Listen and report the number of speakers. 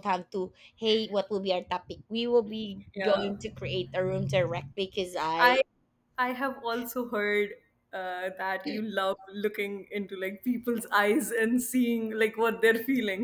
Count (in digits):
2